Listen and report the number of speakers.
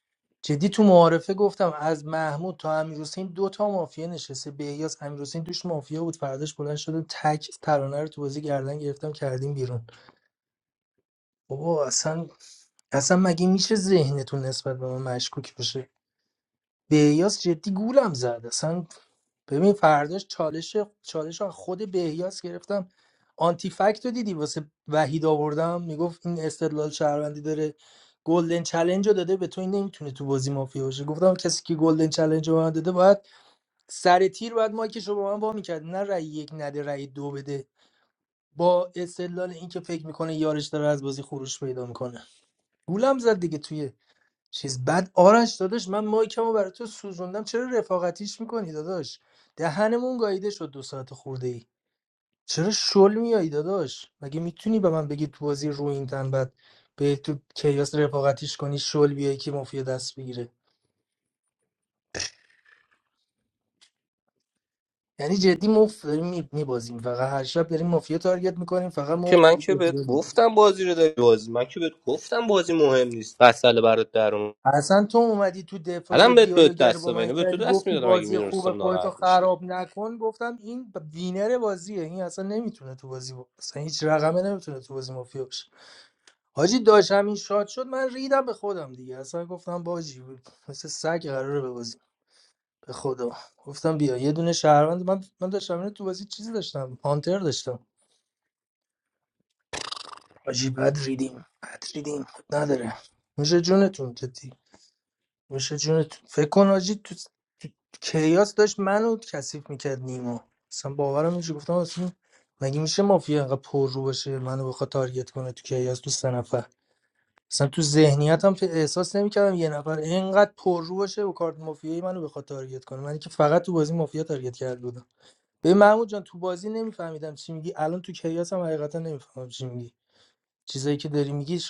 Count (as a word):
two